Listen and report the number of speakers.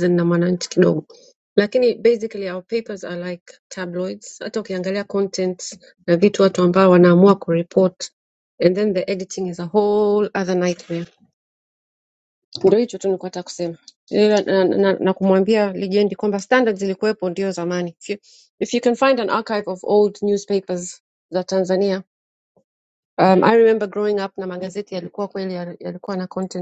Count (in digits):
1